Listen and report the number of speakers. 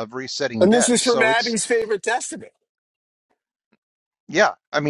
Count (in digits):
2